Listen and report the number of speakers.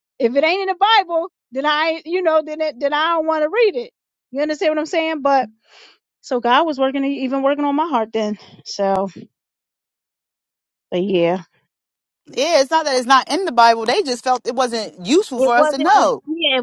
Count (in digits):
2